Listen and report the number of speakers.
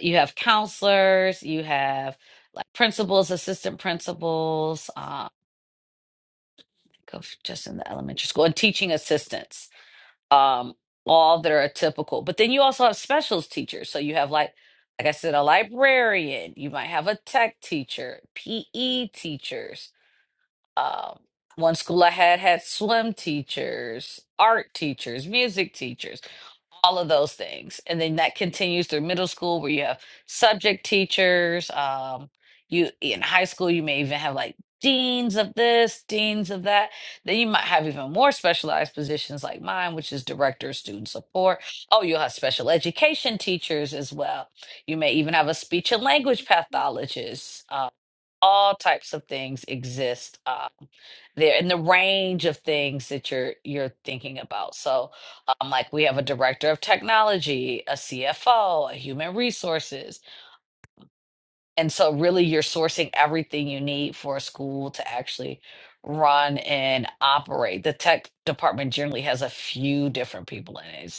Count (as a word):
one